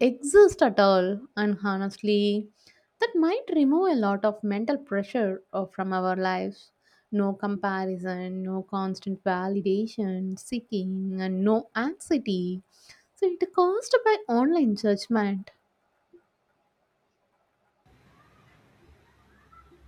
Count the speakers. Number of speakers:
one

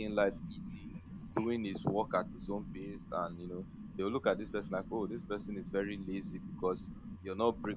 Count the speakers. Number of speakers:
one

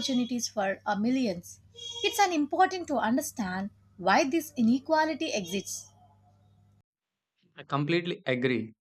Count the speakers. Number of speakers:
two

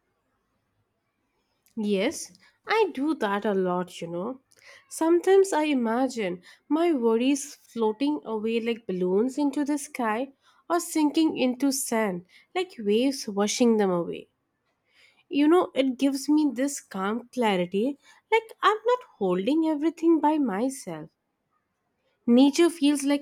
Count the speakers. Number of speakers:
one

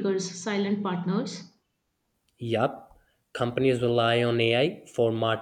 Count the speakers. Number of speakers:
two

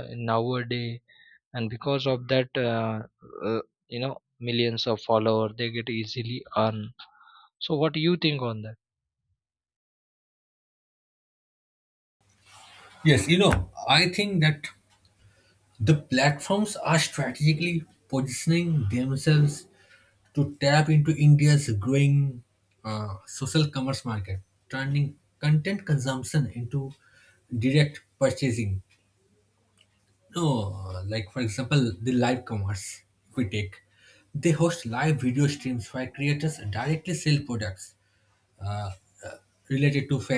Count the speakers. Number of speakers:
two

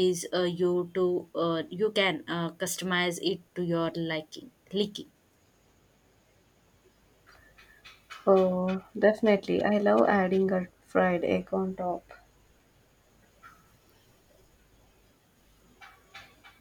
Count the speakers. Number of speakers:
two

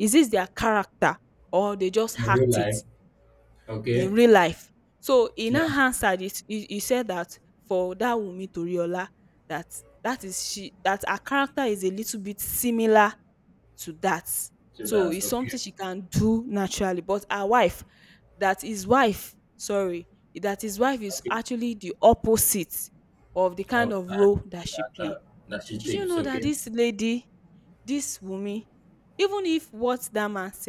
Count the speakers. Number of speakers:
two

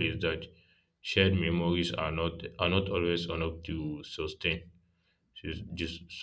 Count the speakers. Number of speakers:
one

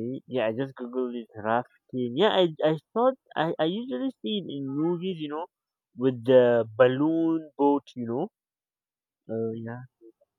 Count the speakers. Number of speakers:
one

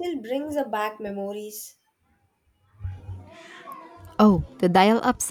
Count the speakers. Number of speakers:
two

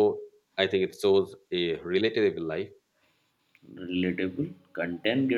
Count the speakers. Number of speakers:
two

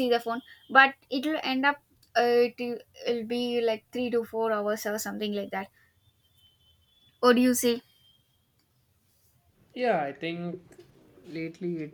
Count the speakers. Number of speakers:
two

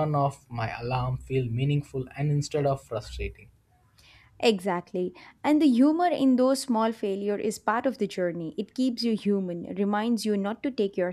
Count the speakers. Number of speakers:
two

